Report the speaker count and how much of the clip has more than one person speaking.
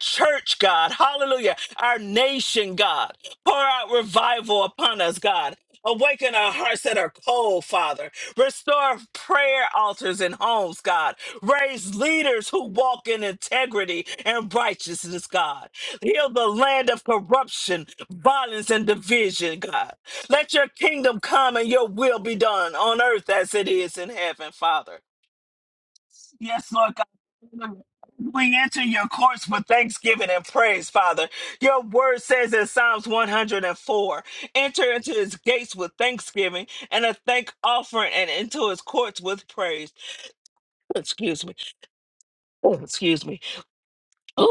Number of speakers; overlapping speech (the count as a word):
one, no overlap